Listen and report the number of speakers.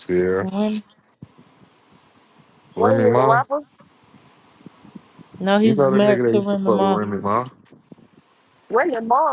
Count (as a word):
three